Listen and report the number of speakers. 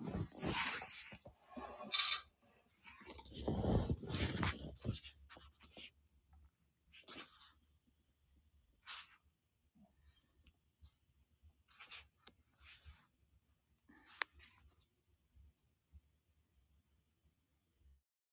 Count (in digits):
0